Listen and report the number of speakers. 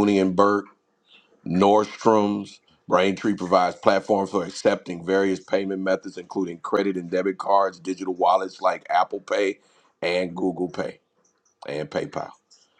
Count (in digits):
1